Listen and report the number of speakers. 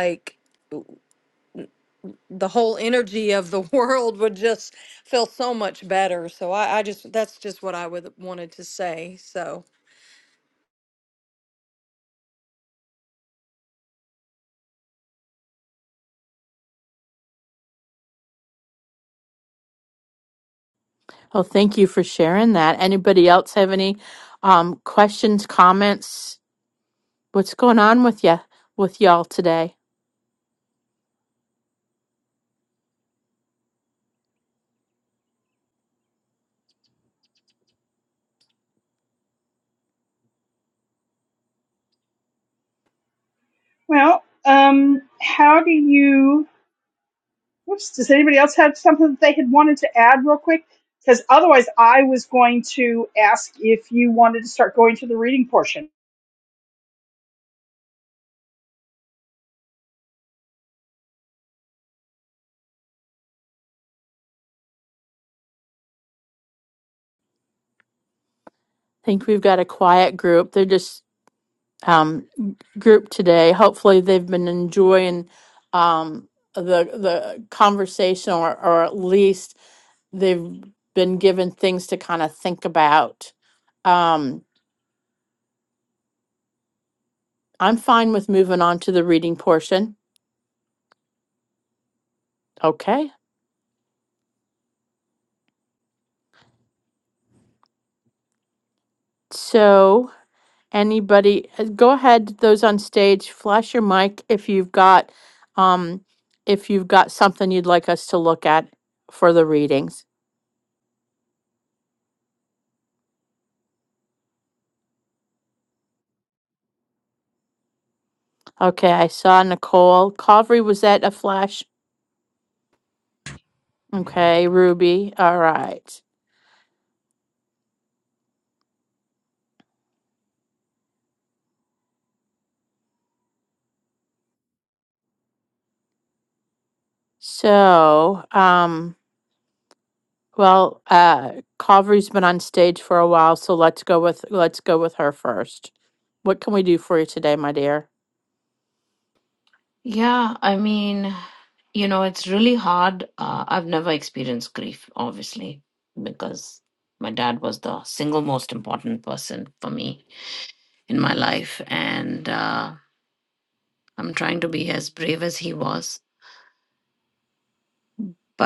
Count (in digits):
4